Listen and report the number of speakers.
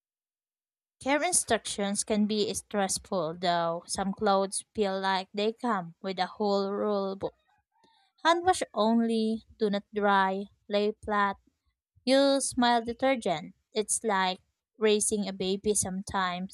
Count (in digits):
1